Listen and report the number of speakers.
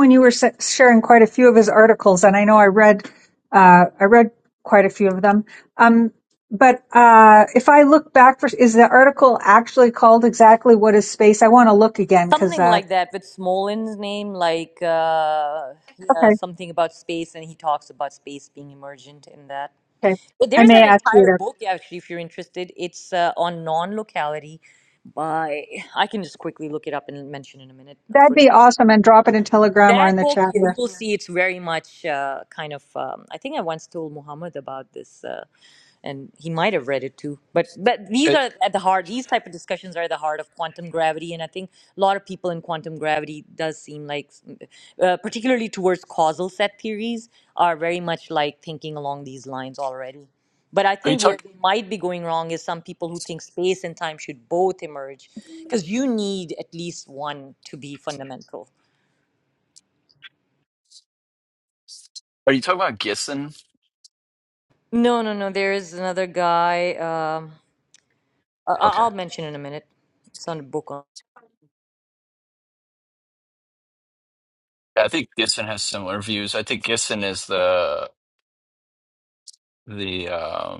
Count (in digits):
3